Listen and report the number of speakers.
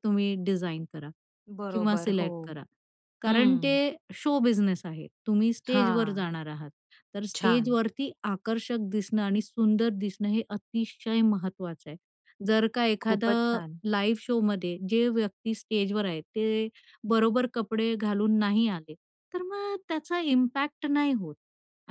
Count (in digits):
2